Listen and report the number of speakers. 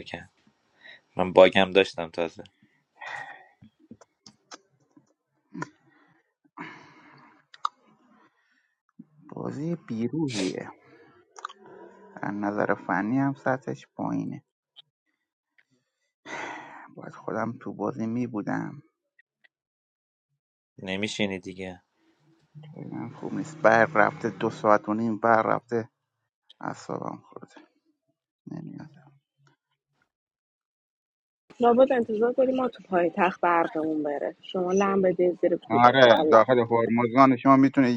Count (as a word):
three